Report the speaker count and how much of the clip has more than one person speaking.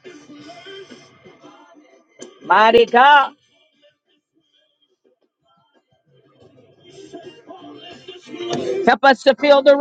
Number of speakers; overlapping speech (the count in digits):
1, no overlap